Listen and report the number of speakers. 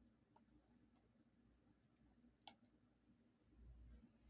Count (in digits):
0